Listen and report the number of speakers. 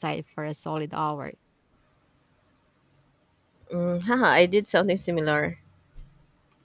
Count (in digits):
2